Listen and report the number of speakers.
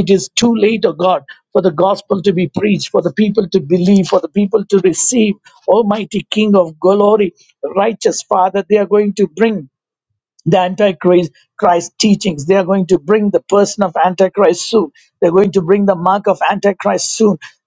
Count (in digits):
1